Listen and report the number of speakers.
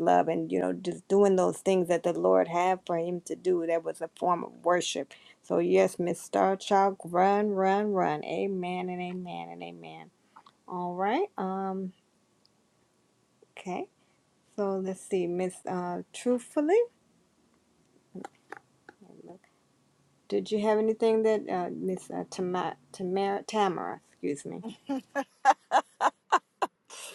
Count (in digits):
1